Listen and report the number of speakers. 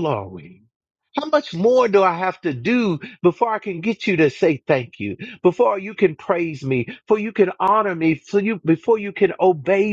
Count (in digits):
1